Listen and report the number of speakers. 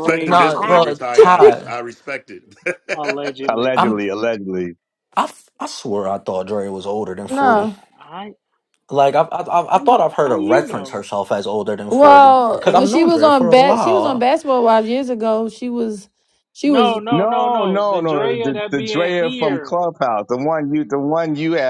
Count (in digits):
5